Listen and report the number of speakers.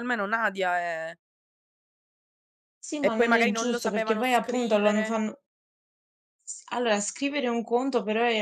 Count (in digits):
2